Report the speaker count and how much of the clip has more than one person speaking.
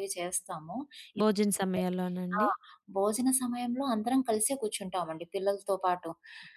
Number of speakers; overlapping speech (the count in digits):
2, about 4%